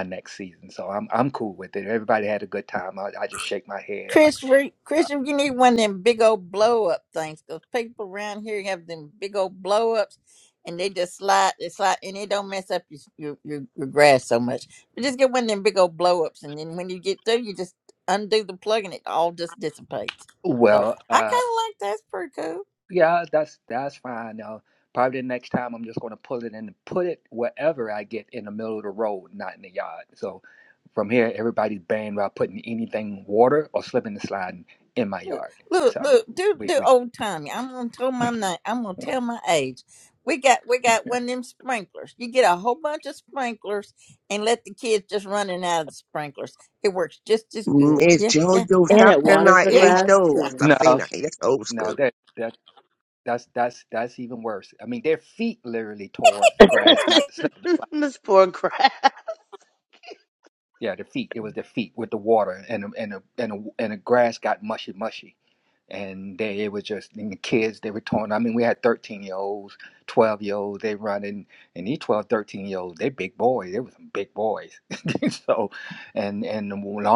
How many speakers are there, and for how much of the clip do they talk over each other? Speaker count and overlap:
four, about 7%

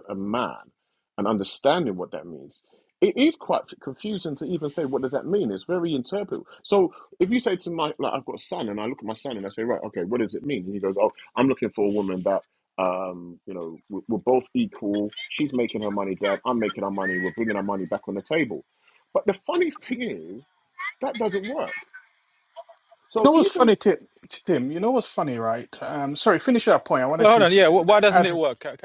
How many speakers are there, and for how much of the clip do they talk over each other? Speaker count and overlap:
three, about 5%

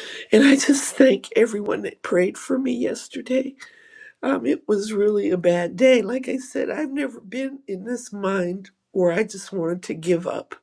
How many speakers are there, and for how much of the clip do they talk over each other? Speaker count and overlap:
one, no overlap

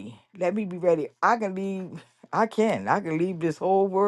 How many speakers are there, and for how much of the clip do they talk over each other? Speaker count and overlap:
one, no overlap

